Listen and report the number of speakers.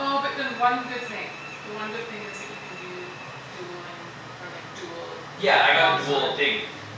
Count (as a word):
two